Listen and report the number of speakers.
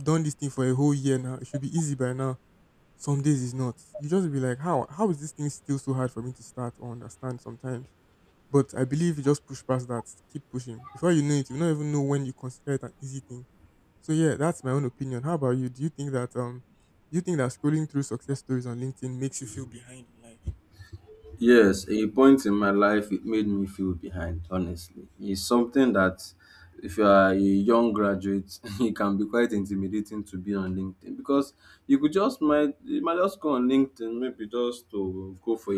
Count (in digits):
2